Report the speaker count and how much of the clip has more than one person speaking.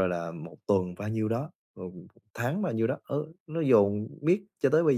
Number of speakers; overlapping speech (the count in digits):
1, no overlap